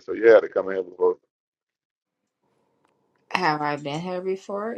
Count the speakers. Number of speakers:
2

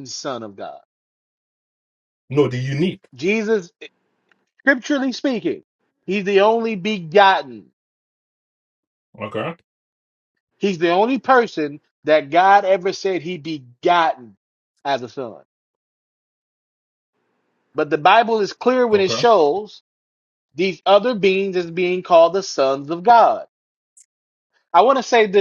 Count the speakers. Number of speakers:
2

